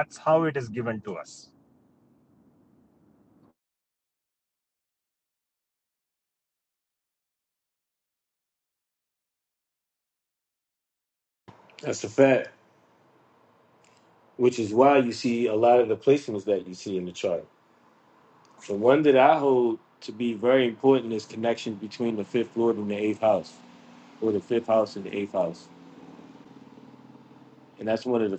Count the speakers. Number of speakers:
two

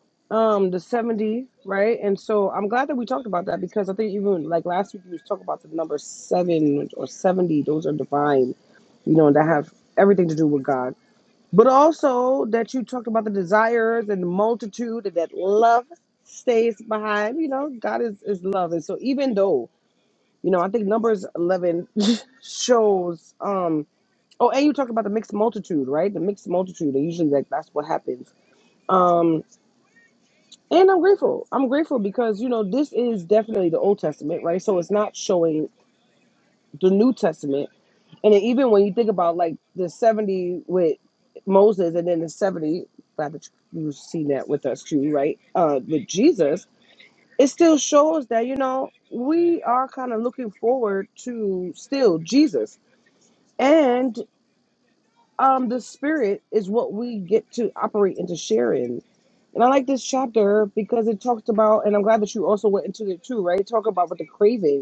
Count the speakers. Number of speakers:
one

